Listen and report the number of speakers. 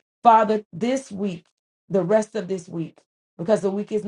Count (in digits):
1